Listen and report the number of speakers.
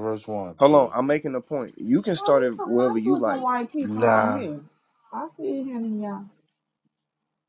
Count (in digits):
3